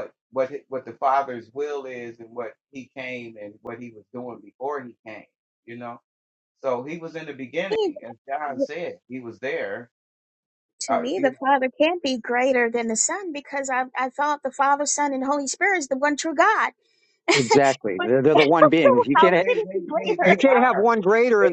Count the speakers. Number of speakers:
three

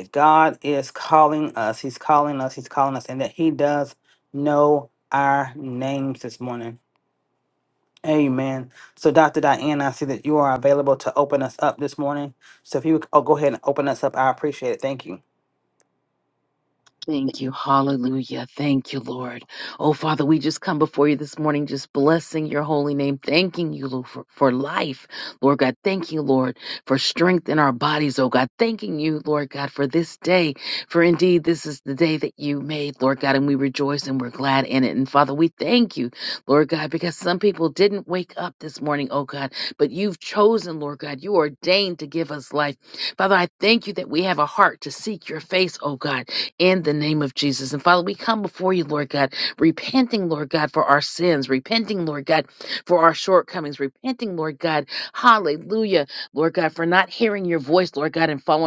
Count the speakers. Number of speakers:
two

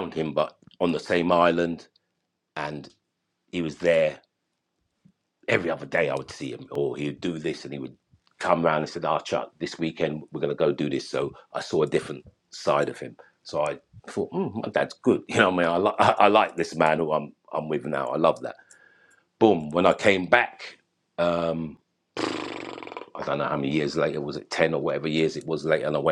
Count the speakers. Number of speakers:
one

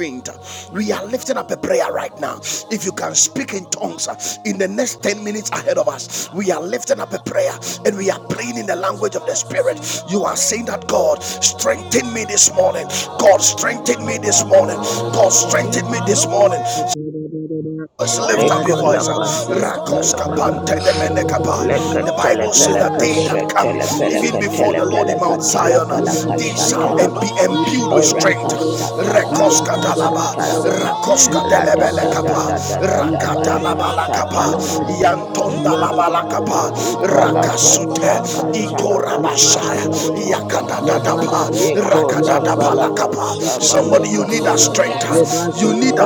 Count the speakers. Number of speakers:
three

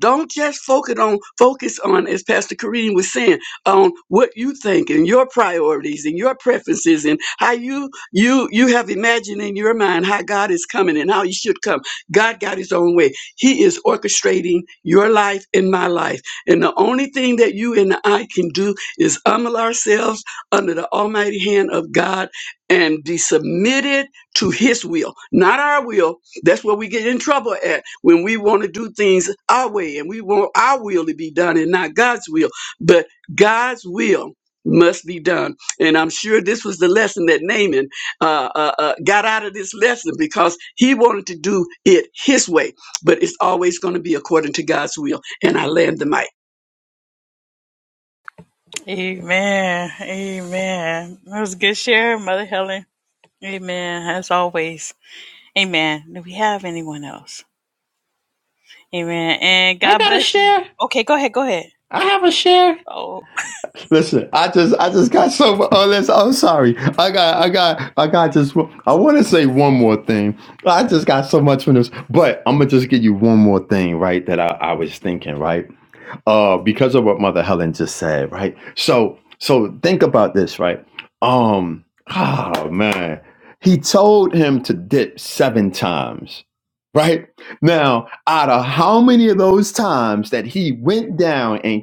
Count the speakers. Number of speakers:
three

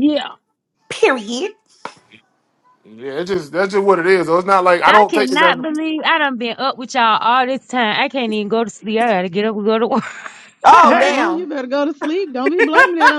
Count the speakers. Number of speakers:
four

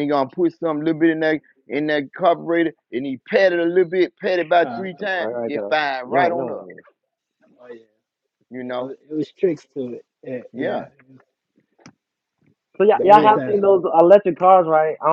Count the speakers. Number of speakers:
three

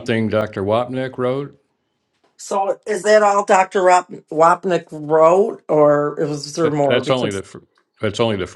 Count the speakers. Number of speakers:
two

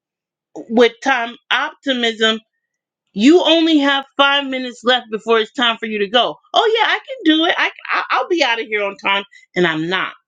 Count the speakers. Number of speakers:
one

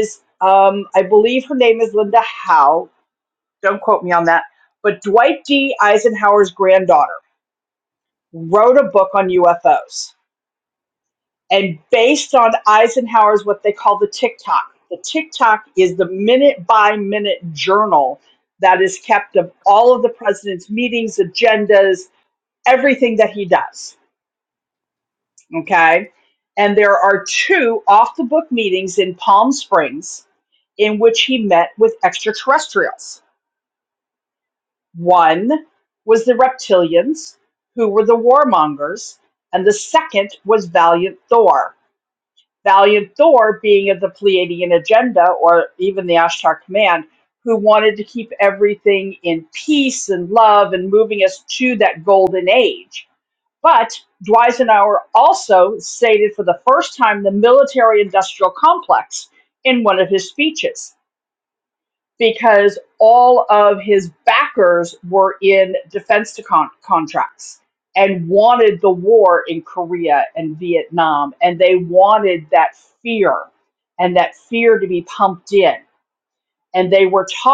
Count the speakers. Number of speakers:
one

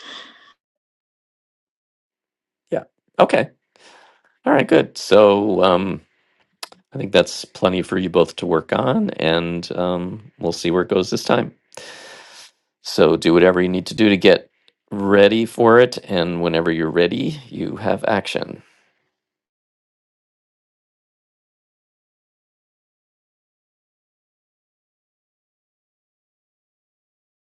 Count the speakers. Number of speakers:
one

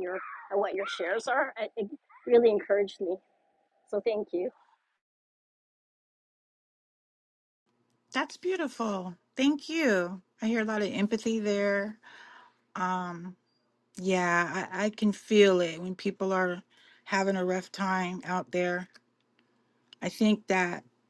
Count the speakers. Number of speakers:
two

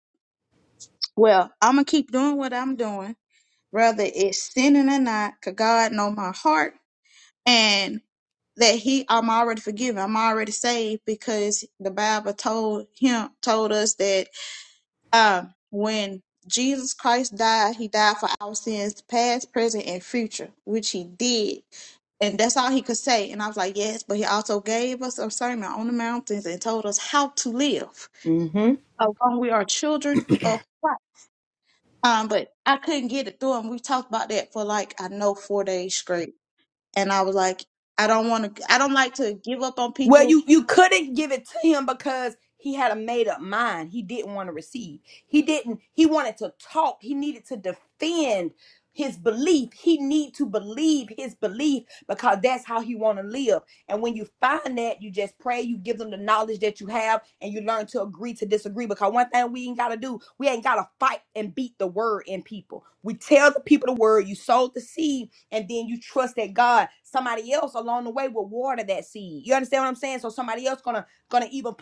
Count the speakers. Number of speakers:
two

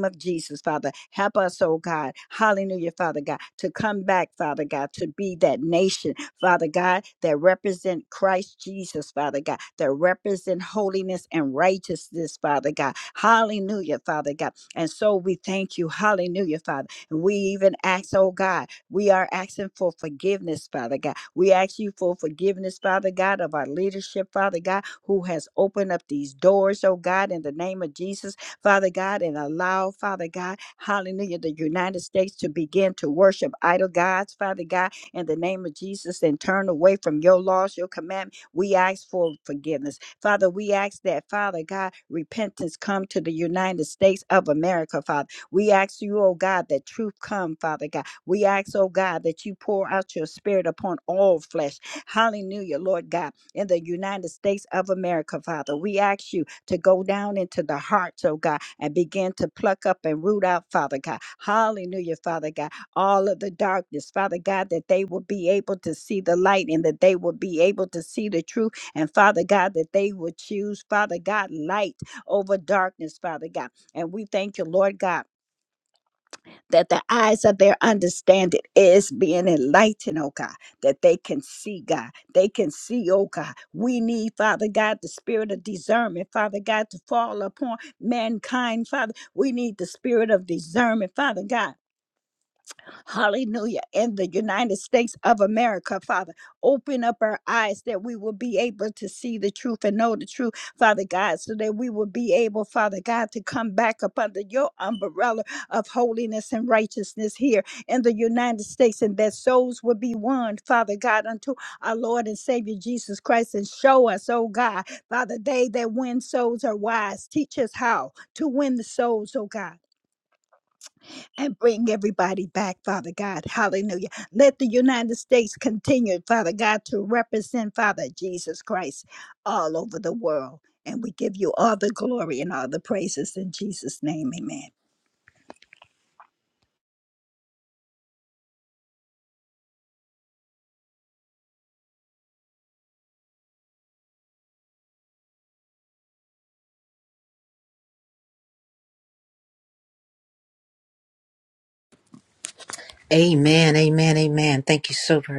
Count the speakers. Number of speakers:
two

